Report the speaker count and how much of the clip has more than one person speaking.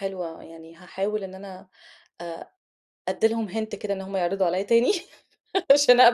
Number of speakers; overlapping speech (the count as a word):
one, no overlap